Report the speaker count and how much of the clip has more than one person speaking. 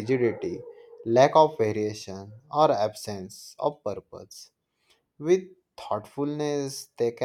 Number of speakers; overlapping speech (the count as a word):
one, no overlap